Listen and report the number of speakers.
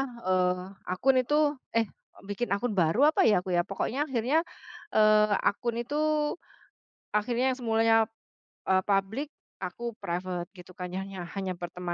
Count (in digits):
1